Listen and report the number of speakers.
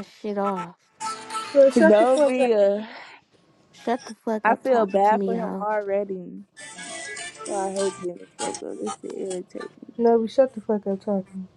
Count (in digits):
3